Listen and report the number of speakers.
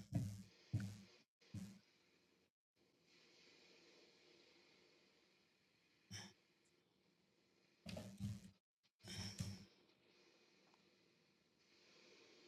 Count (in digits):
0